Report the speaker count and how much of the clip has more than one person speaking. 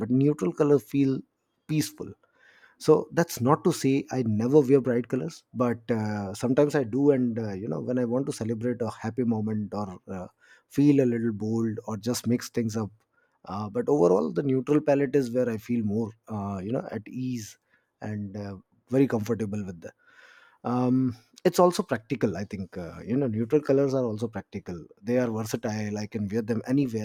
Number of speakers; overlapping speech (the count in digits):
1, no overlap